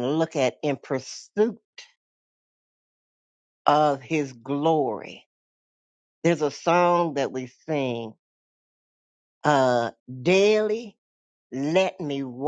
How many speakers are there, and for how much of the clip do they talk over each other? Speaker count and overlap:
1, no overlap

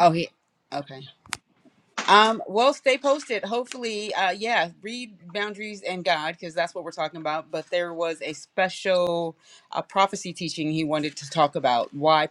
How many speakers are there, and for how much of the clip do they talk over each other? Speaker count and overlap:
1, no overlap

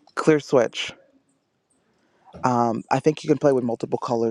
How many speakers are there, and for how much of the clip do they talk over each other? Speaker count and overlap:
1, no overlap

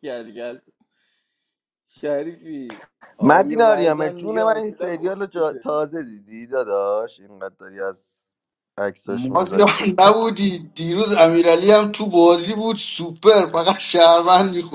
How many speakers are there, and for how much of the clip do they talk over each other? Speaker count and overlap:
3, about 20%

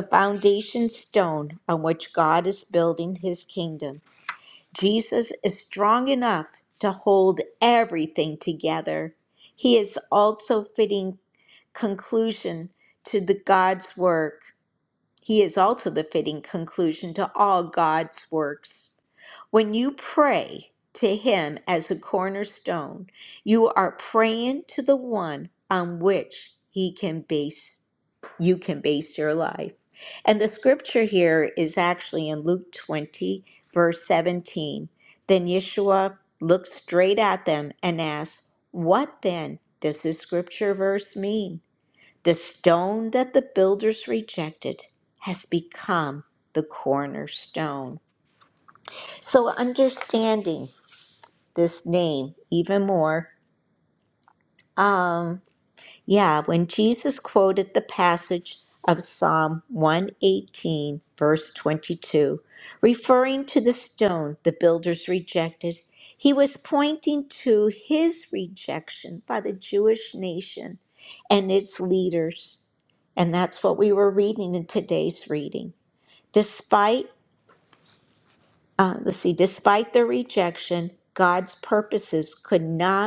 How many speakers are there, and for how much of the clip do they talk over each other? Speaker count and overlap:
1, no overlap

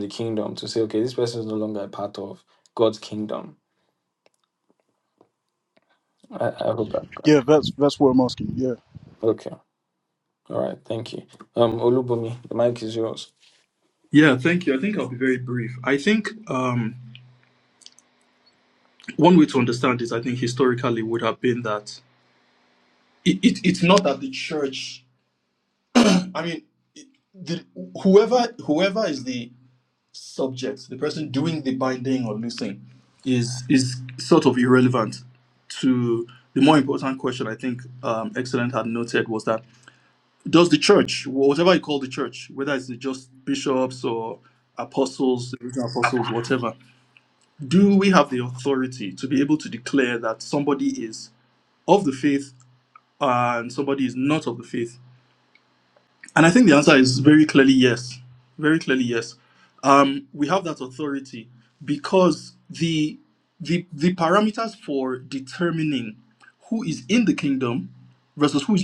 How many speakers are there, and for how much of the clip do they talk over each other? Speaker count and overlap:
3, under 1%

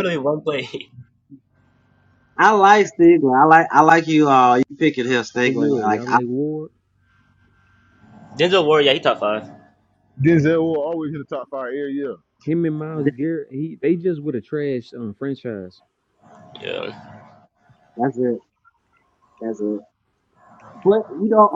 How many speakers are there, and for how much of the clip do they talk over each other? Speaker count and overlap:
4, about 4%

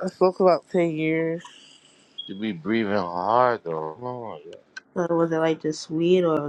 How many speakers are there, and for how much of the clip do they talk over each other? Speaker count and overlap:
3, no overlap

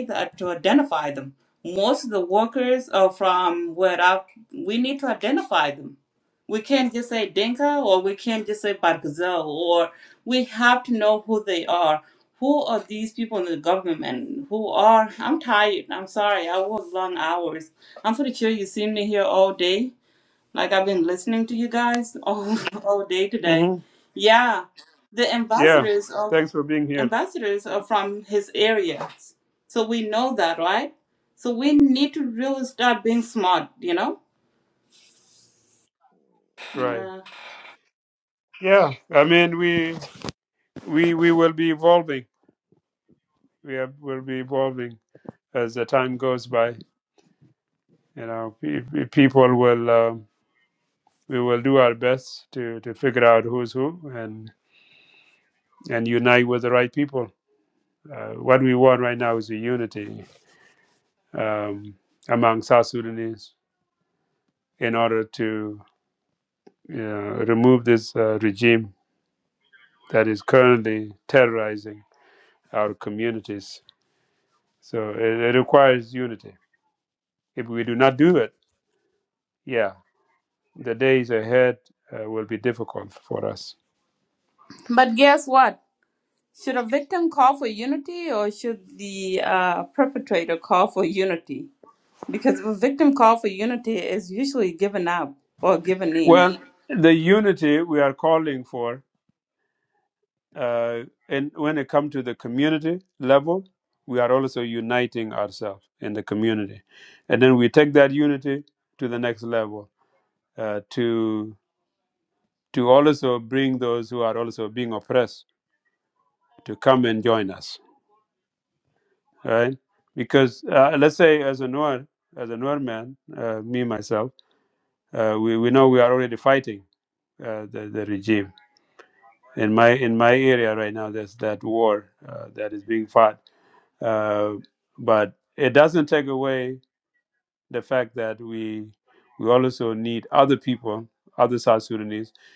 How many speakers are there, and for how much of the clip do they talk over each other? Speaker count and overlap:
2, about 1%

